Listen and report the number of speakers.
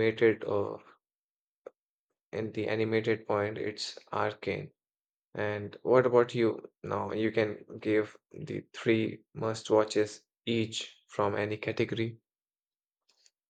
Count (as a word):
one